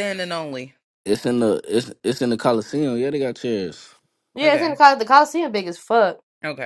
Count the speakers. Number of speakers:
3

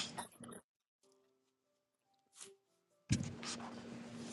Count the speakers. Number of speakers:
0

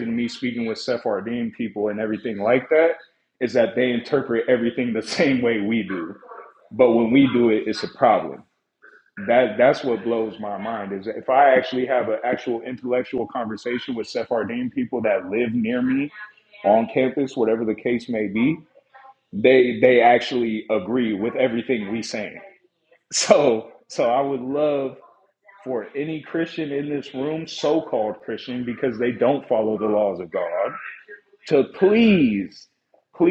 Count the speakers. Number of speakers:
1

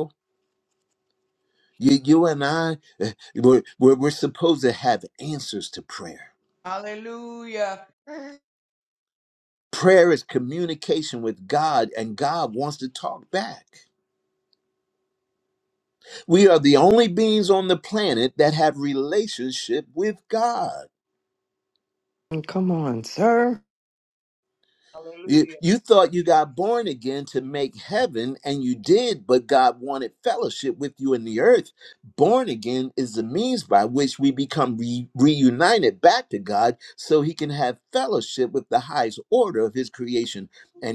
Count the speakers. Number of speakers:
3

